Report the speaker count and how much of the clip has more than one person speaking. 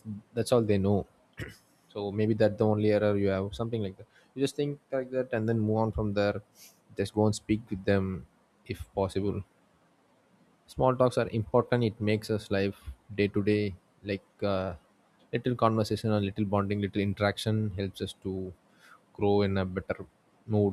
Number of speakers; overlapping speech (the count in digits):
1, no overlap